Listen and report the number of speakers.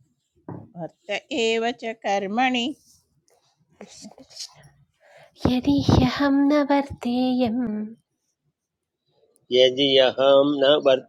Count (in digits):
3